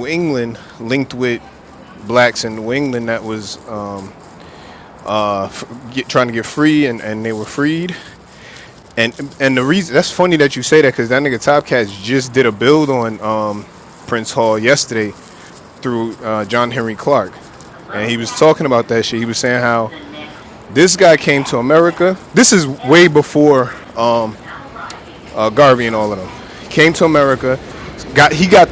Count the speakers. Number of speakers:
1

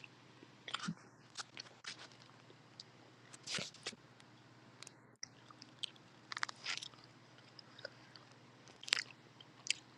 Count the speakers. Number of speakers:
0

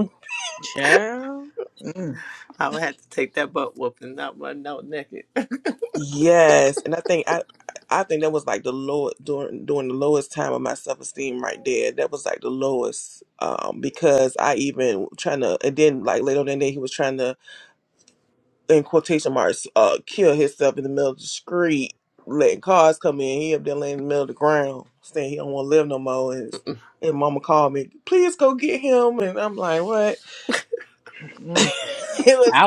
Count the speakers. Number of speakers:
3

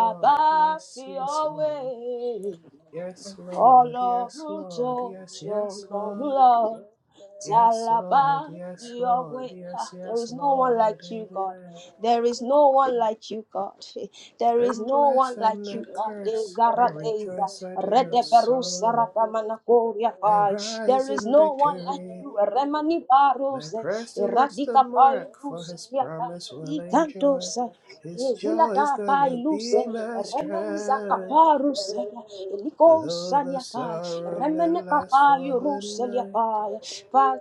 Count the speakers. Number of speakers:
2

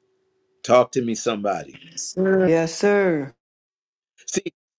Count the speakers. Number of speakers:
2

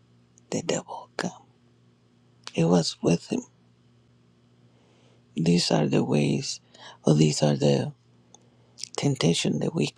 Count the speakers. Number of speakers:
1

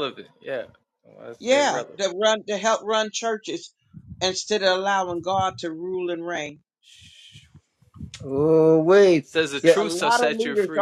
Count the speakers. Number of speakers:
3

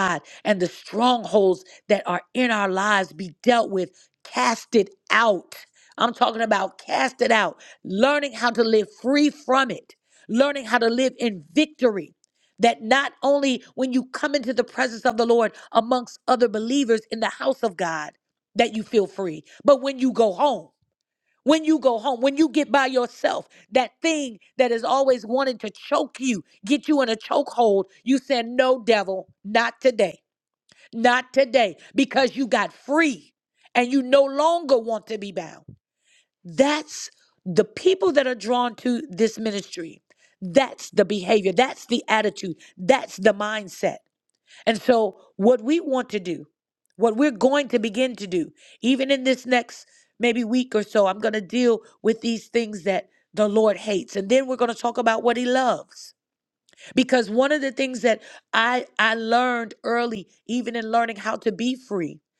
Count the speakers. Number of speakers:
1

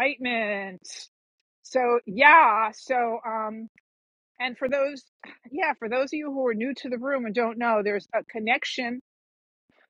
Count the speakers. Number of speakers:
1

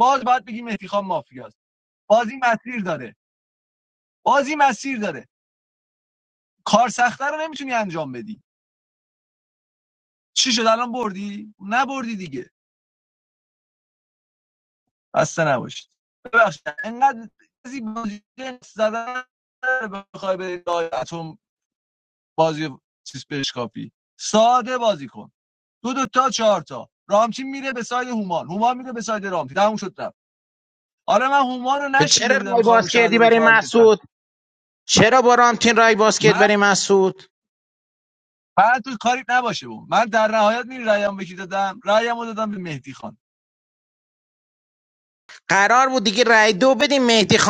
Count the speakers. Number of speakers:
2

